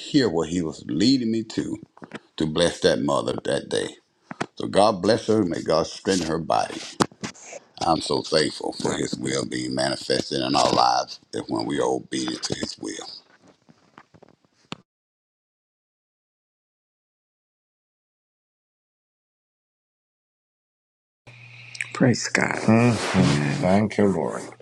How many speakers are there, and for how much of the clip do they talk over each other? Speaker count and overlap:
2, no overlap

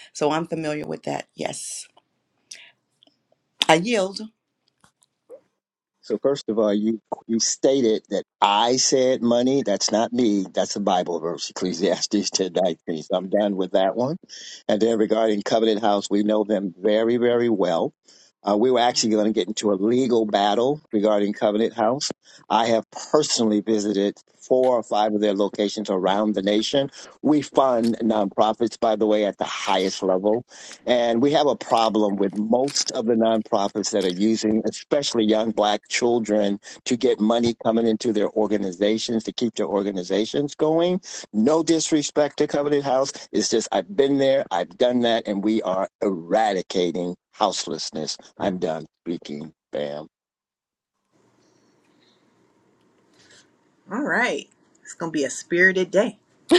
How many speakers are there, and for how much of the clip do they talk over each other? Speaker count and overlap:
3, no overlap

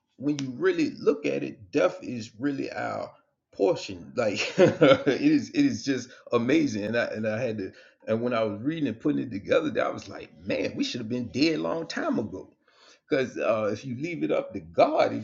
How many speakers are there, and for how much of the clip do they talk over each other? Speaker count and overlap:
1, no overlap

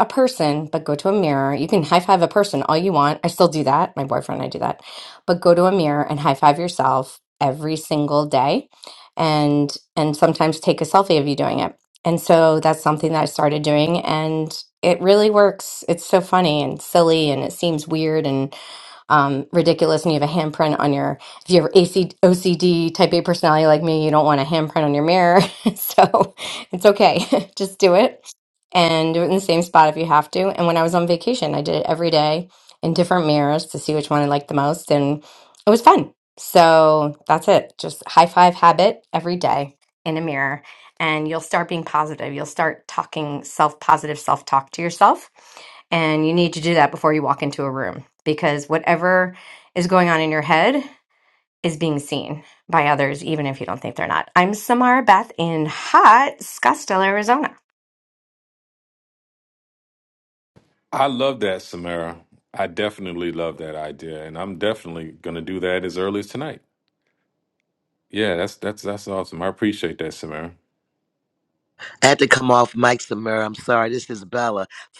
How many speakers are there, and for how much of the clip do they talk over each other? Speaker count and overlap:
3, no overlap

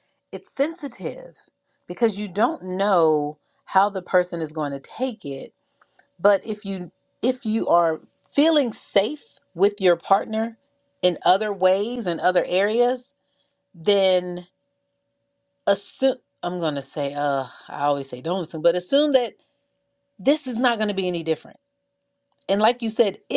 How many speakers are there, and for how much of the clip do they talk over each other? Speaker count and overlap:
1, no overlap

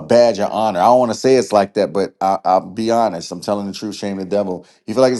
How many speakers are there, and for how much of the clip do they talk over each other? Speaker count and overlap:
1, no overlap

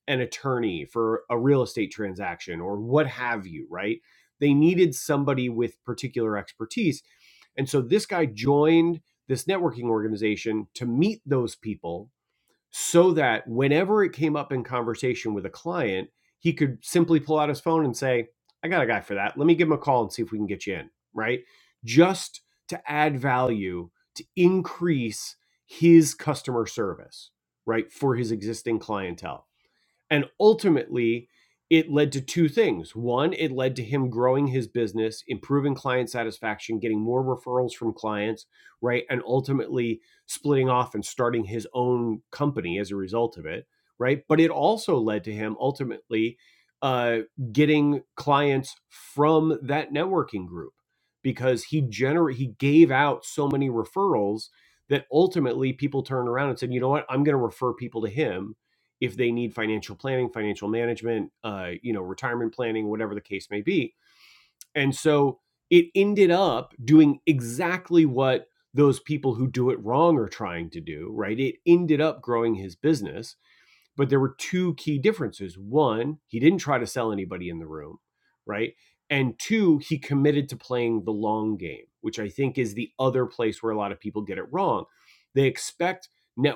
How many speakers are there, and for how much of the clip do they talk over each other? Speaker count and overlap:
1, no overlap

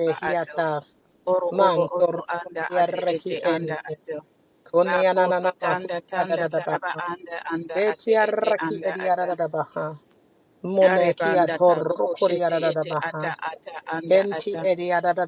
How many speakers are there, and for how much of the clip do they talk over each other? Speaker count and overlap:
2, about 61%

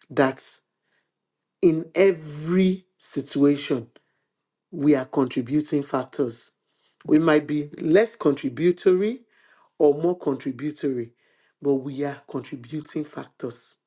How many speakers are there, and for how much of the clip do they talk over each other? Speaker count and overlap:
1, no overlap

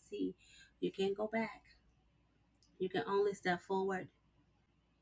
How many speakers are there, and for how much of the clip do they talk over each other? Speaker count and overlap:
1, no overlap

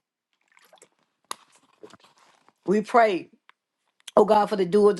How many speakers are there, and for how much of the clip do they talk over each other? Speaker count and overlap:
1, no overlap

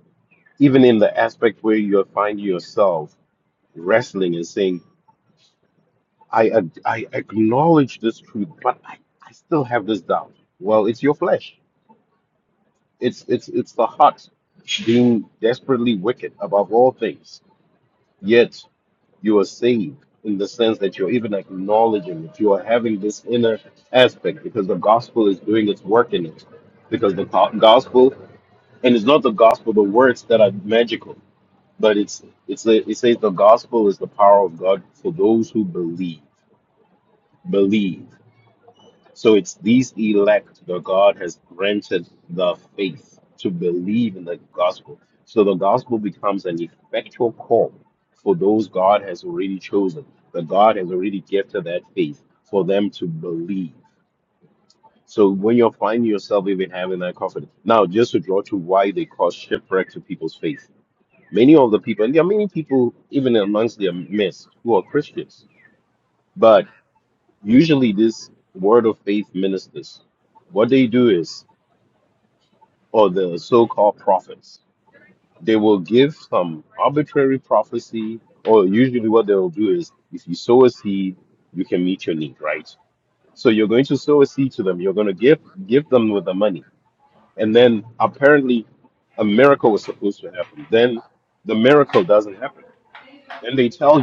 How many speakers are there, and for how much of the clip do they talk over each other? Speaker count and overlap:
1, no overlap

